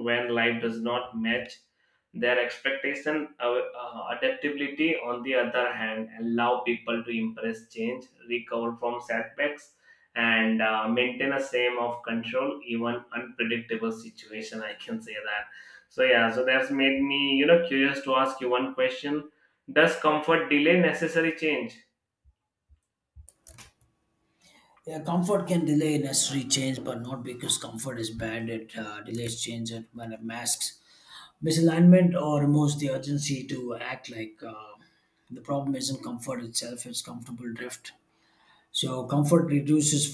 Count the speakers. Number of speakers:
two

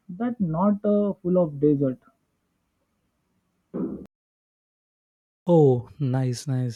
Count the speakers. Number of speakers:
two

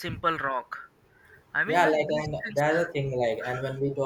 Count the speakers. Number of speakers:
two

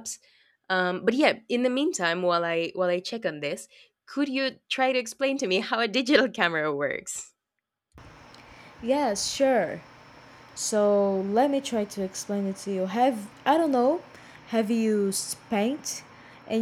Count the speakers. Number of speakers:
two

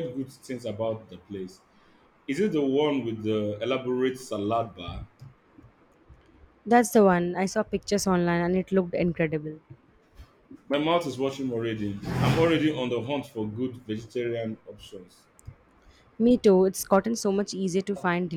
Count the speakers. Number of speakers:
two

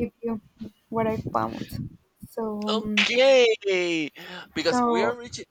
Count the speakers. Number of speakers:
two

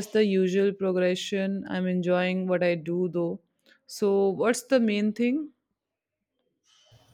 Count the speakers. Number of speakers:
one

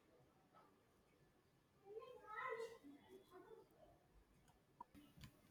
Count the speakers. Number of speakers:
zero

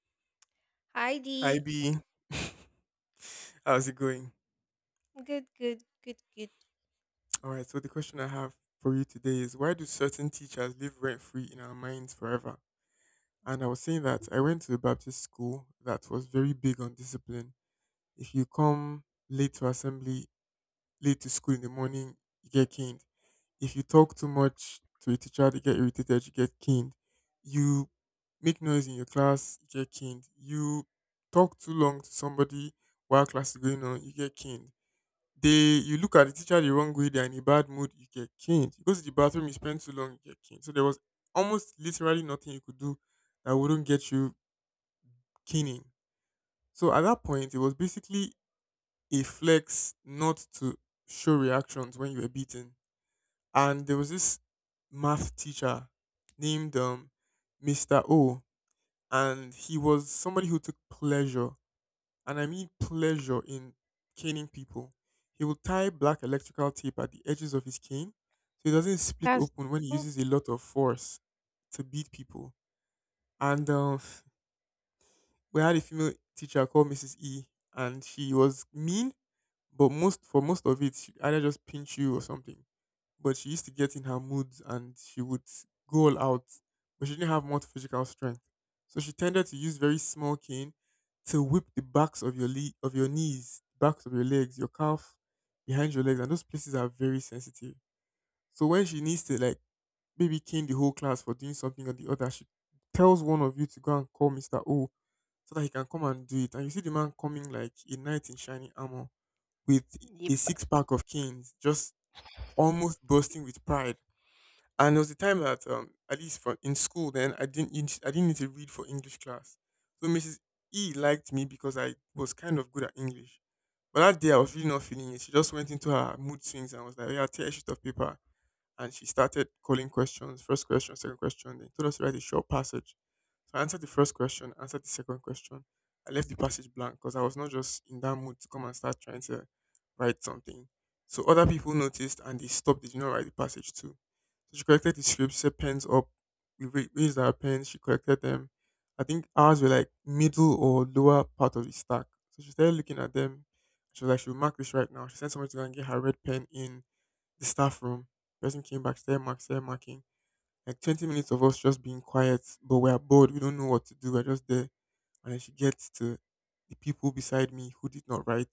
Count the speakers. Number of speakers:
two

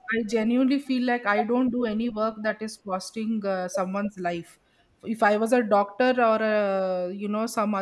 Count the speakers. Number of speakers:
one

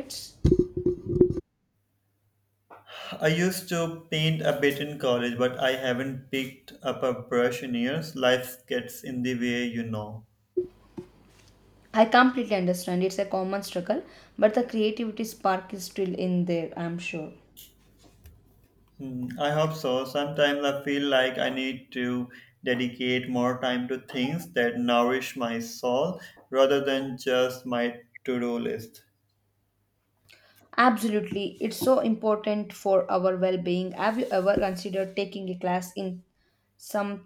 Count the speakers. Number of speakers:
two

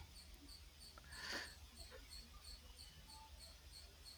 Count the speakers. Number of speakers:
zero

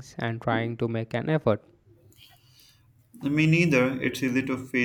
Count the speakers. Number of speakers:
two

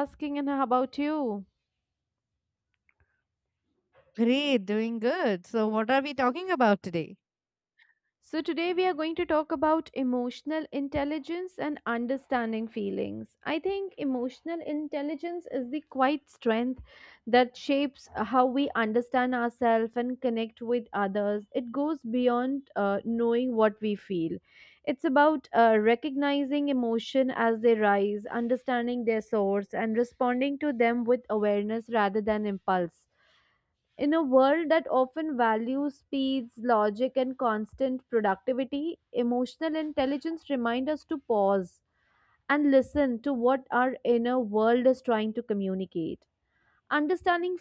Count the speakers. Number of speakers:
two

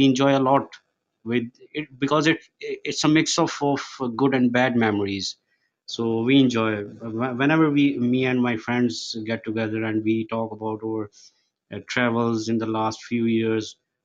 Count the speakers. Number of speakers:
one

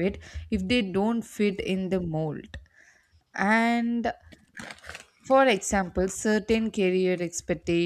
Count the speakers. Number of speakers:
one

